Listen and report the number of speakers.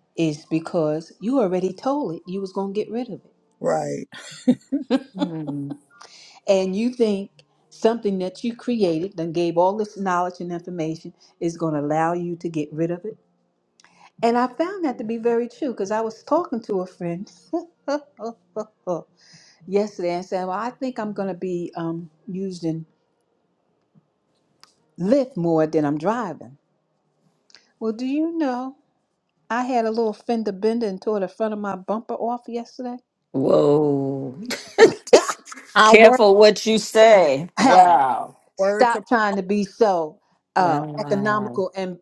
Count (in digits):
3